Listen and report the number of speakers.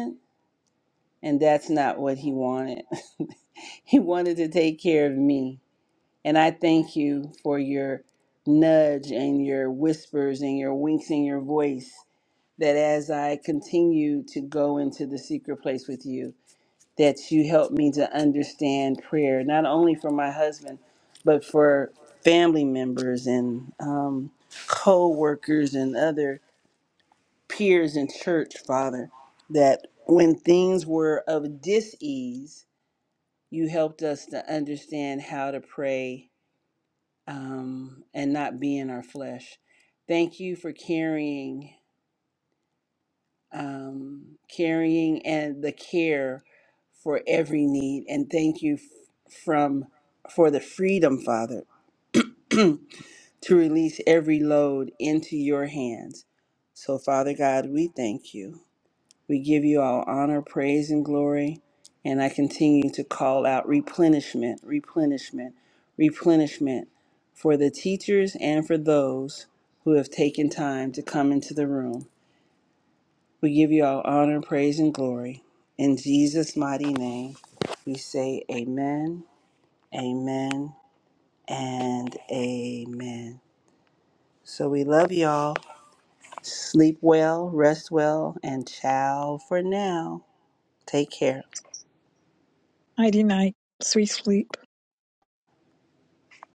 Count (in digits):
2